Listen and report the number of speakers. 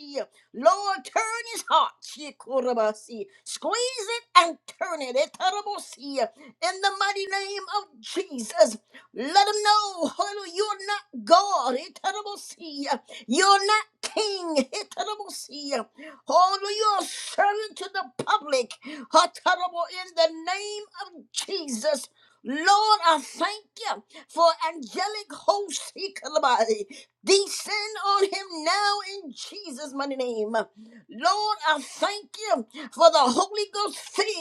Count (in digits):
1